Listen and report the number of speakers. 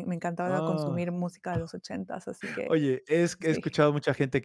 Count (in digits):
2